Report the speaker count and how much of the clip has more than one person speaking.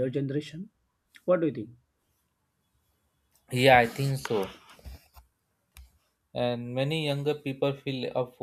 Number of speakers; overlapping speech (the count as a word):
two, no overlap